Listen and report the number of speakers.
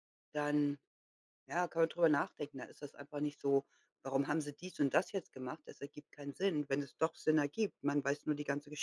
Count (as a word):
one